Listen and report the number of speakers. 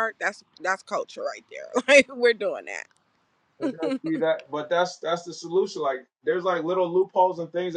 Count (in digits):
2